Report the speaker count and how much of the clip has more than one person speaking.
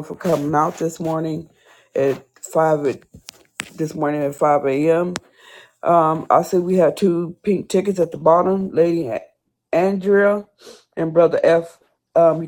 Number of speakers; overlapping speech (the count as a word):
one, no overlap